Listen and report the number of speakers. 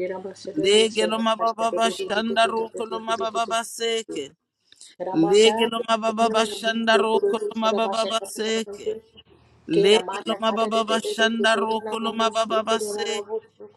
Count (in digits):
2